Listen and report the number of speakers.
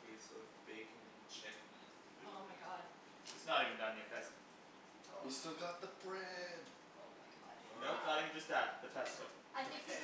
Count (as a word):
four